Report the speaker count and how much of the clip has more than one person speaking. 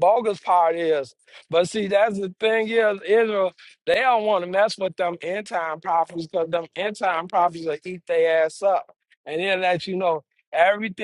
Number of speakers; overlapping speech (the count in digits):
1, no overlap